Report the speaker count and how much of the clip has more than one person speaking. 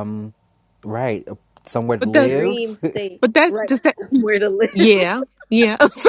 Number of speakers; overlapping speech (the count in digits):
3, about 19%